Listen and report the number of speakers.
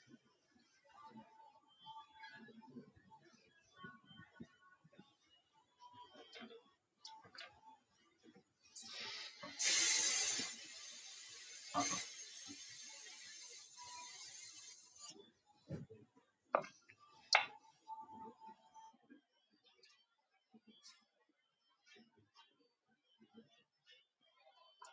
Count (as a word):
zero